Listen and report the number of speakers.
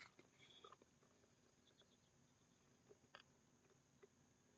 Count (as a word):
zero